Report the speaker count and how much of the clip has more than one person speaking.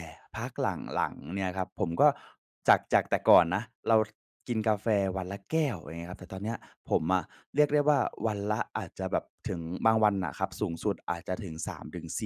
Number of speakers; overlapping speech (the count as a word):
one, no overlap